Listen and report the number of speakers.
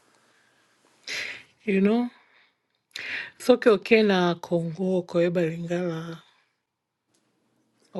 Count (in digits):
1